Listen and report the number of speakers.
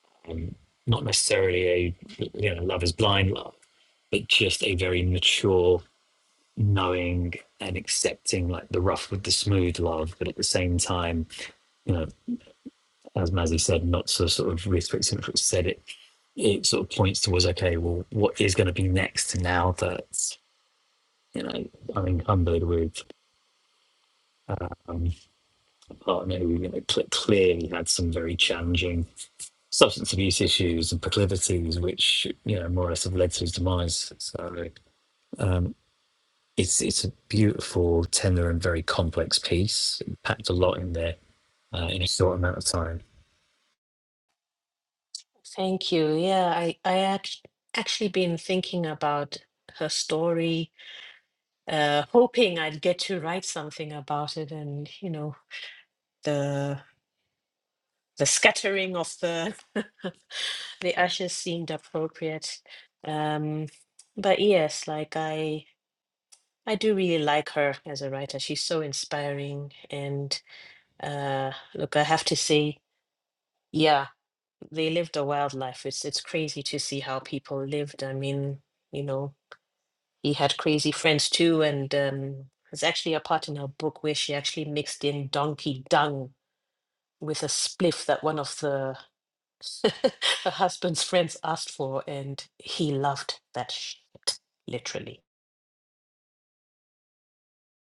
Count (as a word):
two